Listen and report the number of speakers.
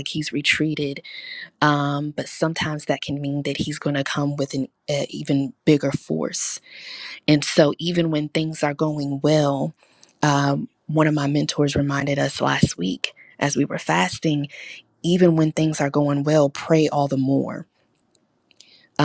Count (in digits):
1